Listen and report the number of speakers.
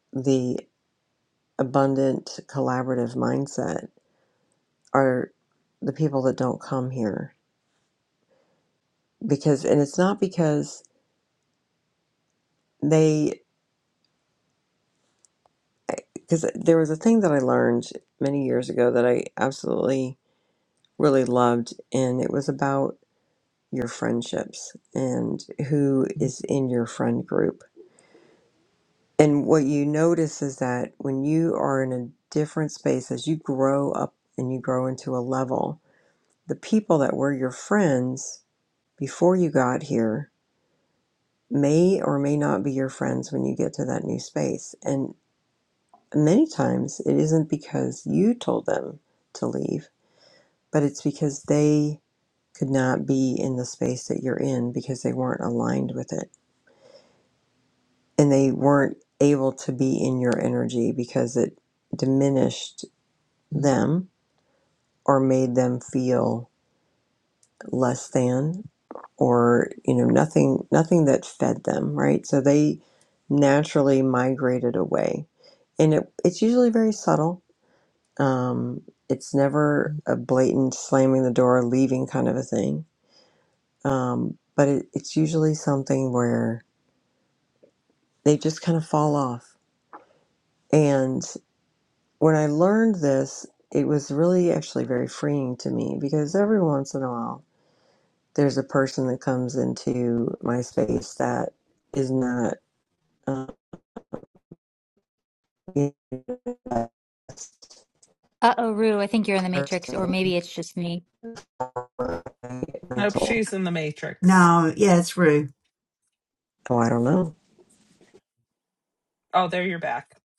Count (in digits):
4